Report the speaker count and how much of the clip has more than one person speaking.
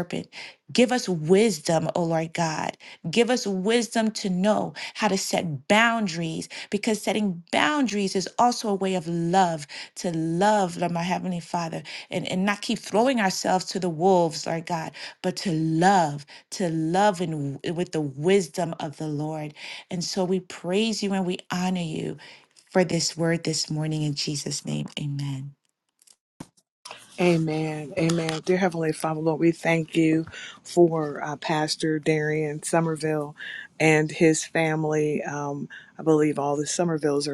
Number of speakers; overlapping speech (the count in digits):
2, no overlap